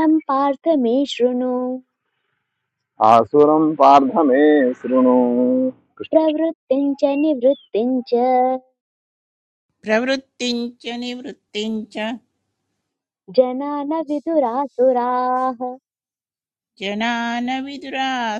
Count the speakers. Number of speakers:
3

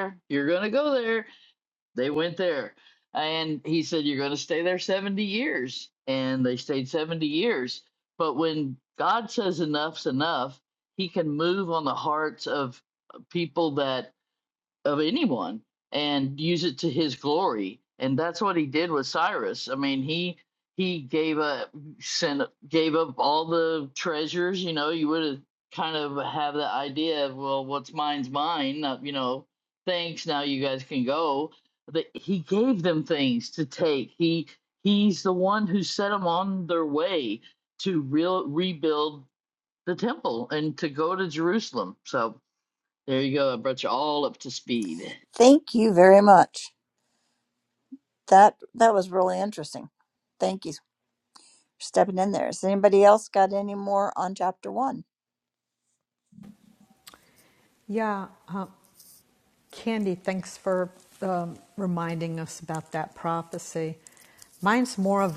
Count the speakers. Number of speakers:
3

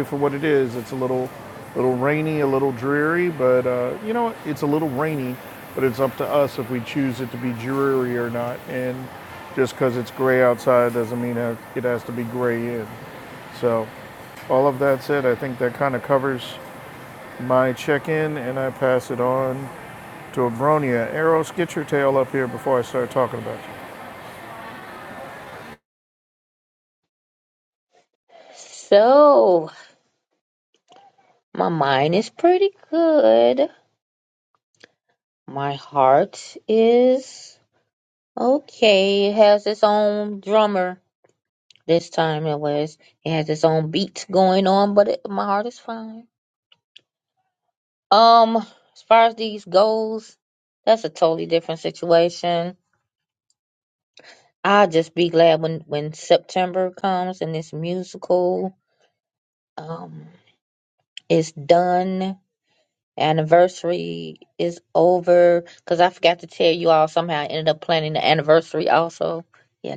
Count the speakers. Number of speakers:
2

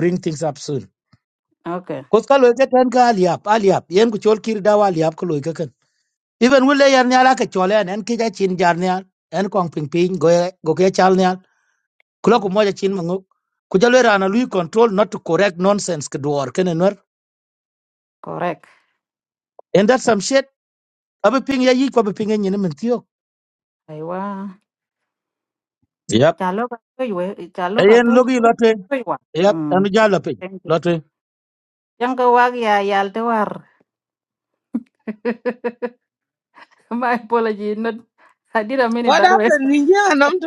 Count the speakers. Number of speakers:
3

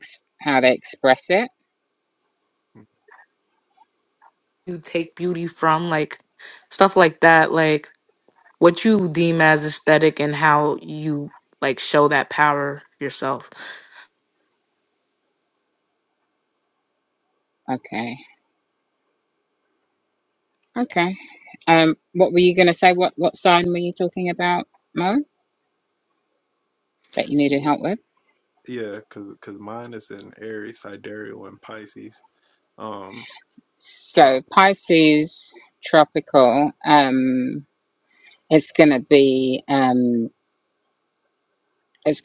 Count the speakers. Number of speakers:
3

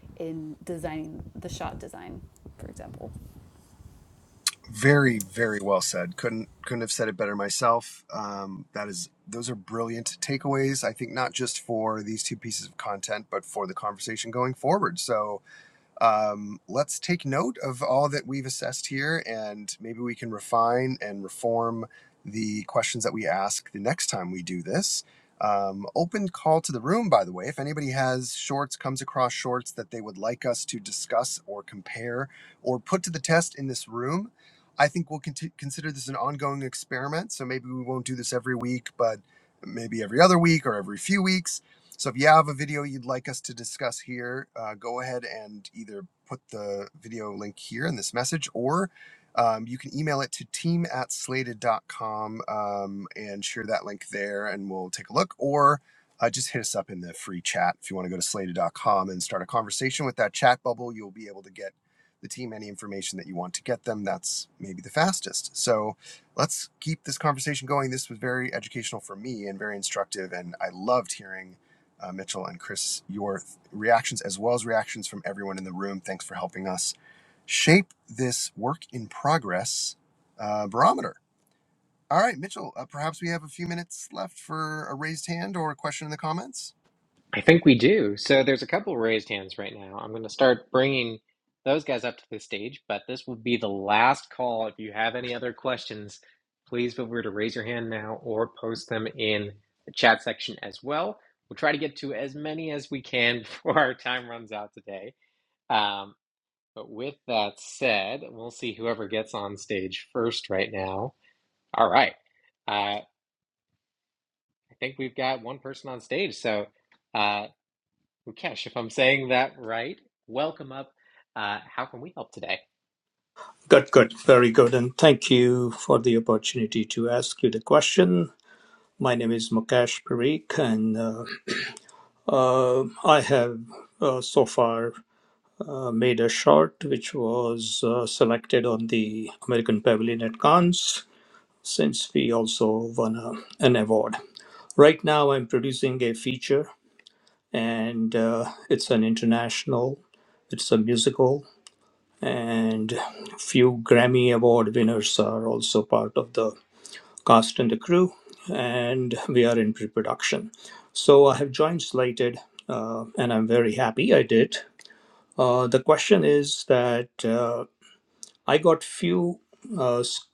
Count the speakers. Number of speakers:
4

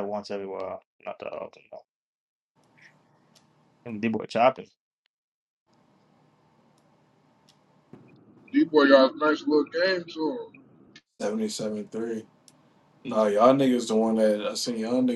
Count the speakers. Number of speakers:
3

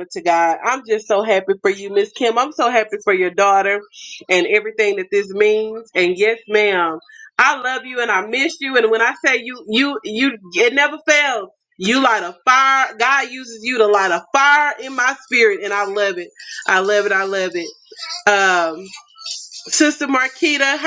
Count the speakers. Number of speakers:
1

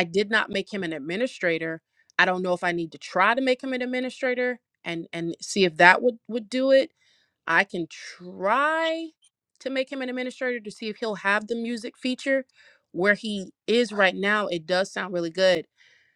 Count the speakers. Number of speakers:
1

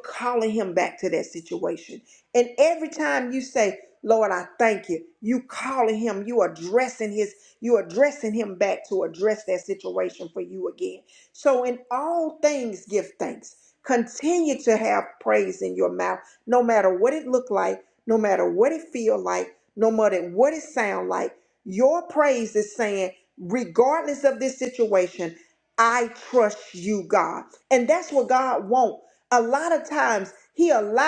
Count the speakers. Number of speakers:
1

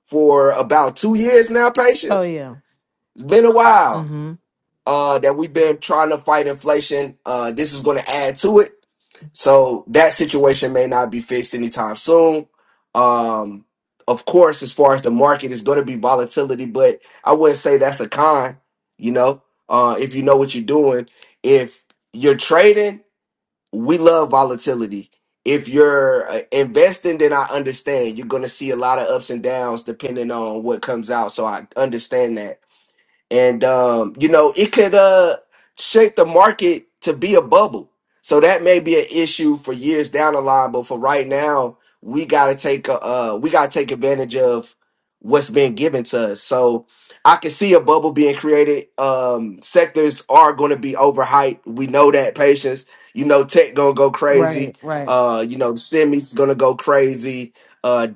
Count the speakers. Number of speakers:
2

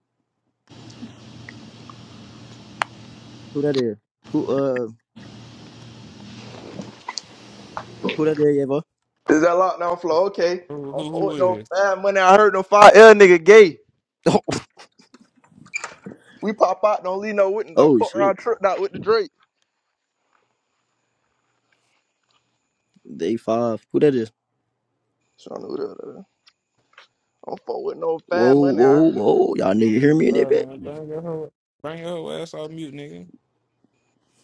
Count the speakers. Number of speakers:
3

